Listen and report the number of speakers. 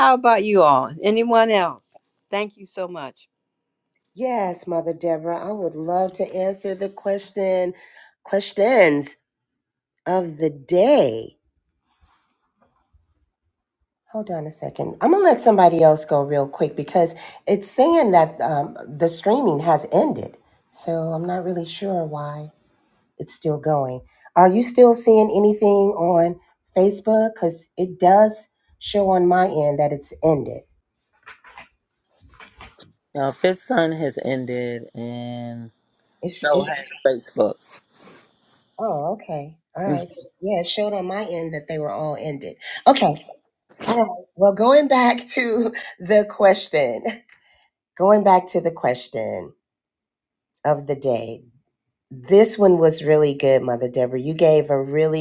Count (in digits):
3